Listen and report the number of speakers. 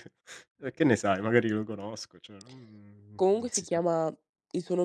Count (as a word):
two